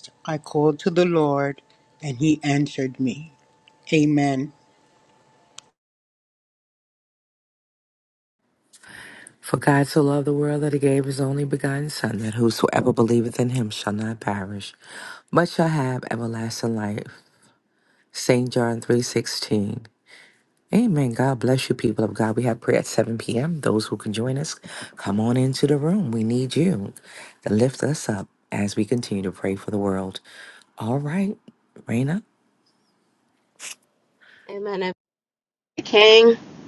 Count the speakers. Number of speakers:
three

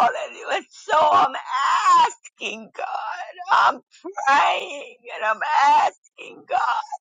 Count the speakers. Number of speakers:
one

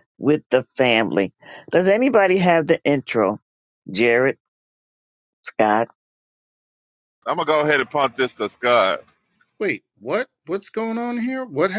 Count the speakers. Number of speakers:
three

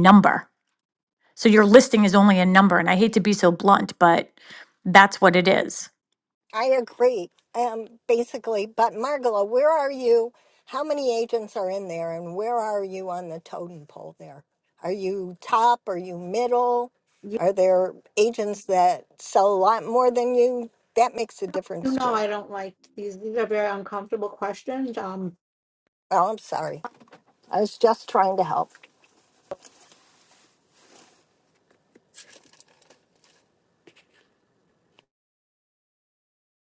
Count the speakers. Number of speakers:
three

